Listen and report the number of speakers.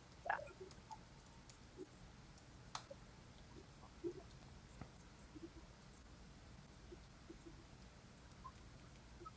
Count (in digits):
0